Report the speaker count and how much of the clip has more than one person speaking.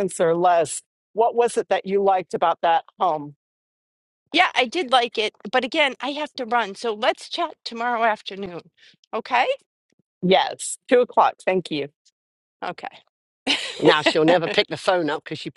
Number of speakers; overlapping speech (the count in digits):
3, no overlap